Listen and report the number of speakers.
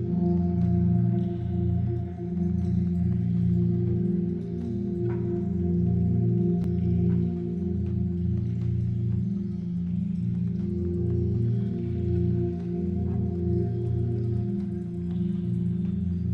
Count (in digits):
0